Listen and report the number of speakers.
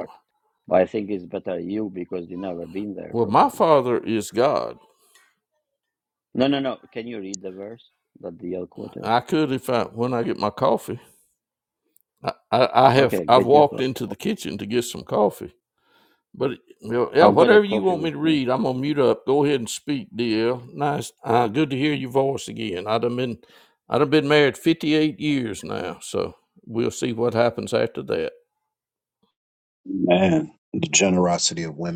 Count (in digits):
3